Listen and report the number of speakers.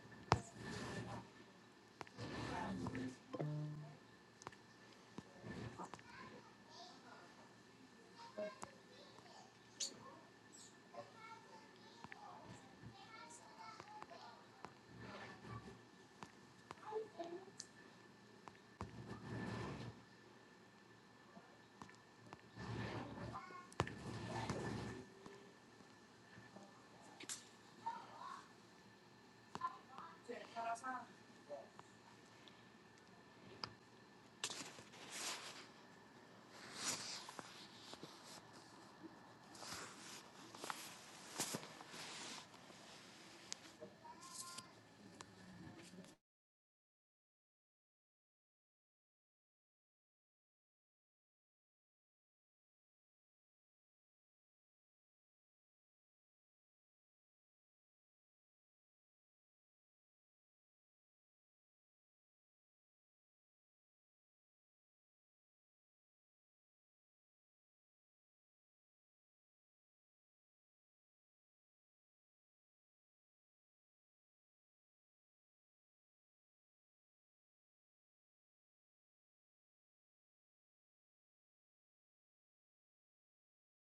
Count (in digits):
0